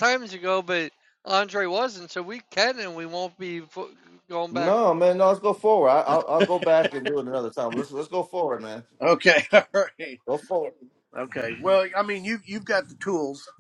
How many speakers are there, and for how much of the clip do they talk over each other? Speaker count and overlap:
3, about 2%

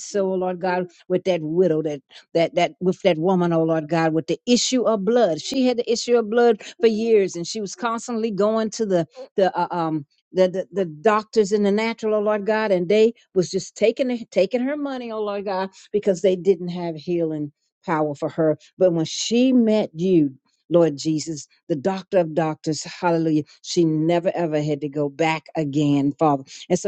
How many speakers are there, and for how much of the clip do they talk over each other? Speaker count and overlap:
1, no overlap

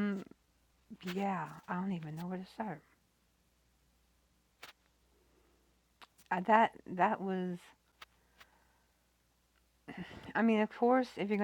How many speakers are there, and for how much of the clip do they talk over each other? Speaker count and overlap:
1, no overlap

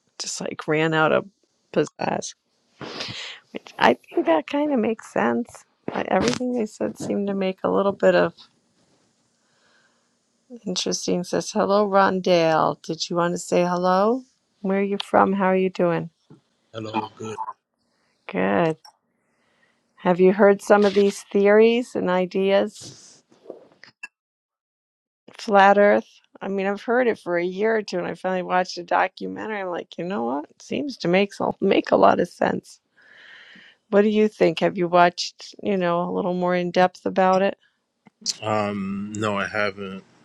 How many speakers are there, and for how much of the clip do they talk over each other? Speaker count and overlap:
2, no overlap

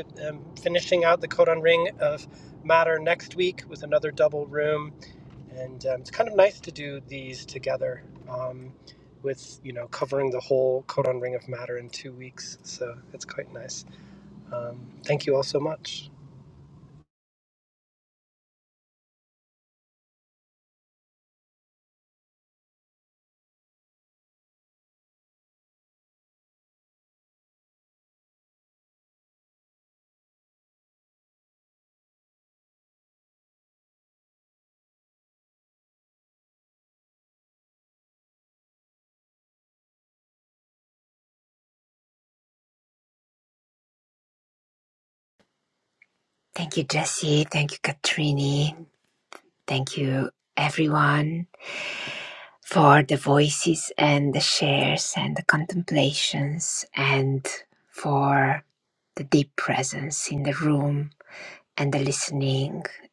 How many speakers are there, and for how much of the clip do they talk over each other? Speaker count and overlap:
2, no overlap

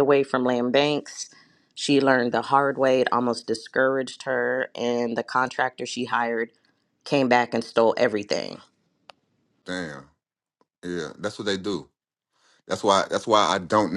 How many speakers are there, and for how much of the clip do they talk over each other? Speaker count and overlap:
2, no overlap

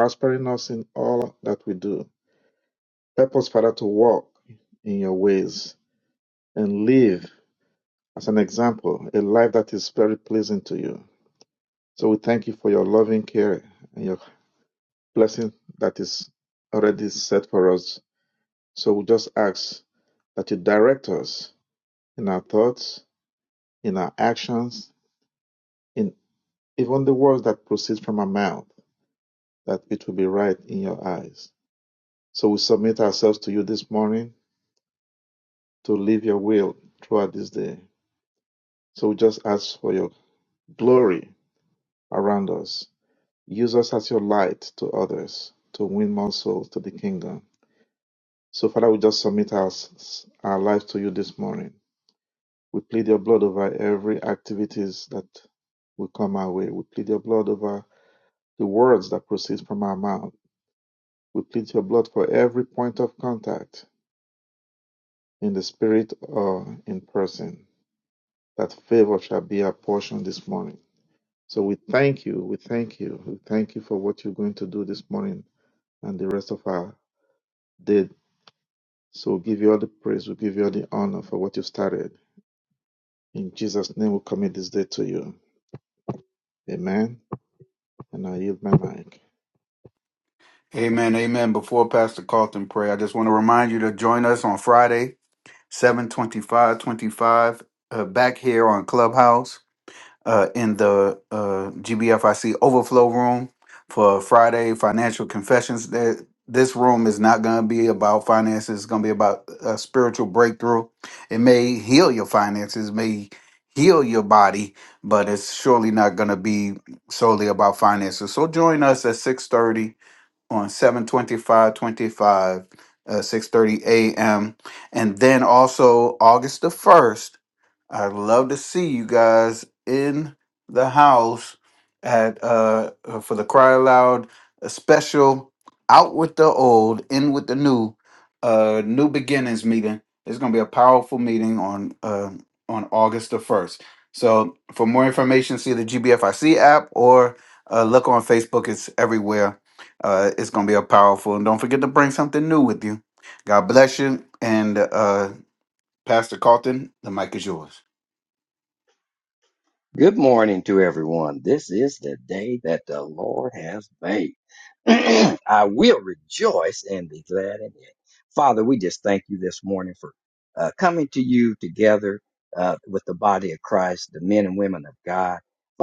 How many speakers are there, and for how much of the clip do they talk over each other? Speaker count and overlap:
3, no overlap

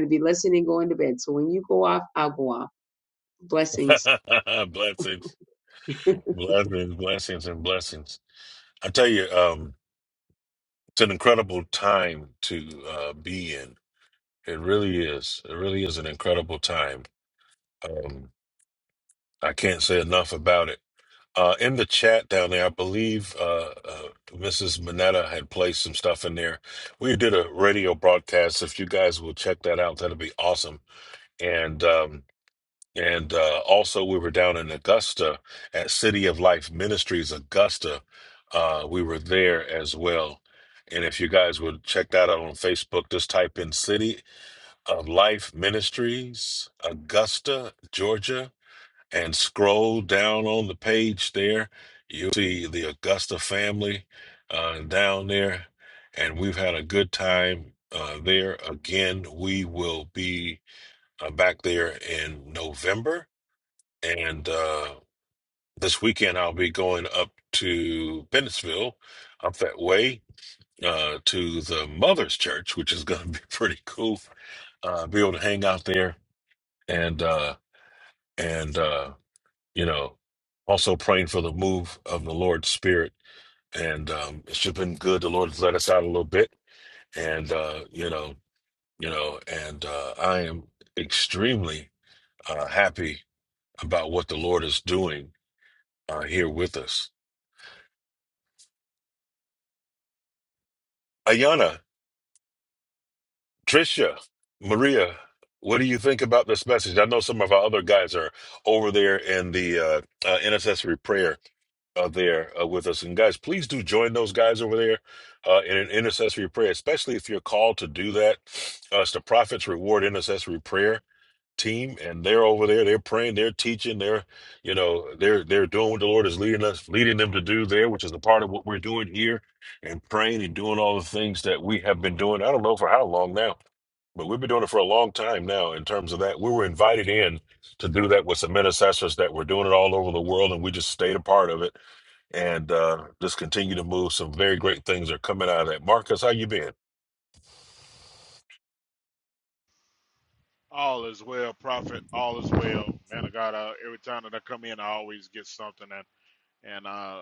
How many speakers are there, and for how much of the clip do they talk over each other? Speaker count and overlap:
3, no overlap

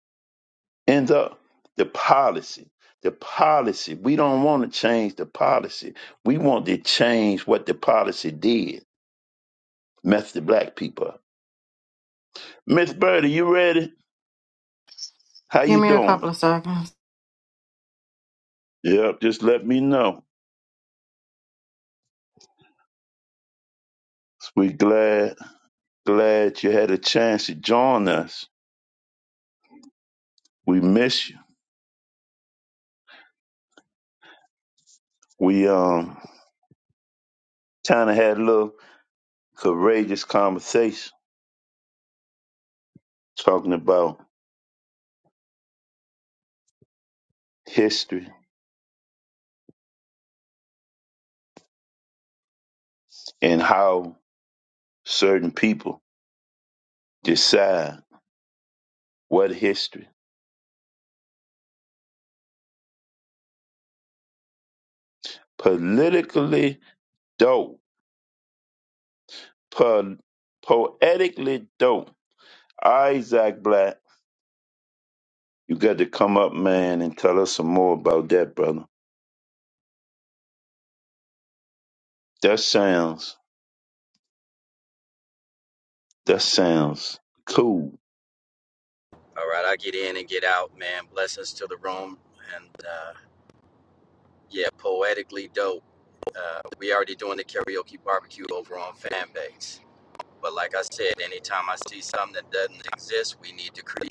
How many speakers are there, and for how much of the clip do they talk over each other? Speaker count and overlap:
3, about 1%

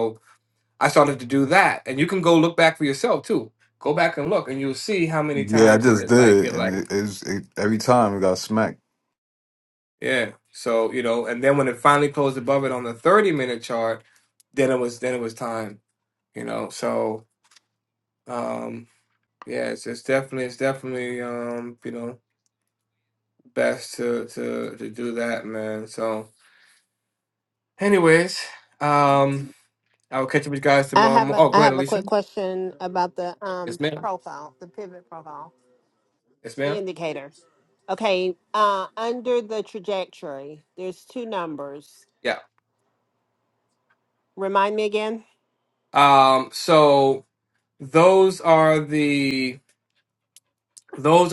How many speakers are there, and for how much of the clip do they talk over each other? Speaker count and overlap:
3, about 6%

